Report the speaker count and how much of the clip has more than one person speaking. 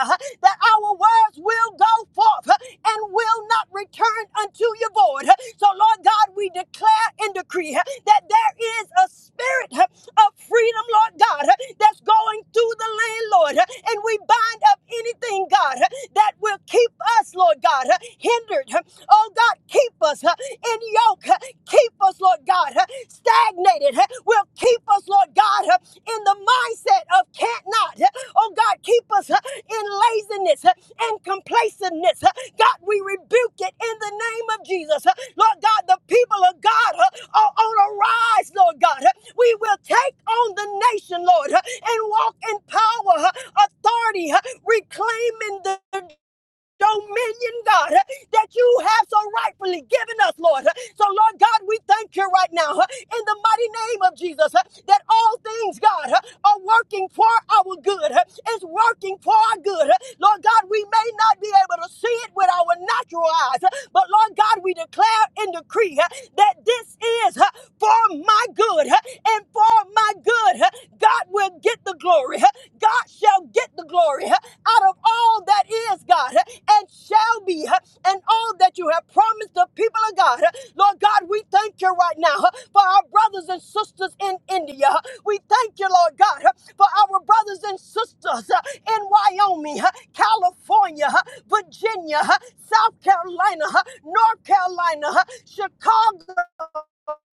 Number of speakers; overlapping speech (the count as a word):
one, no overlap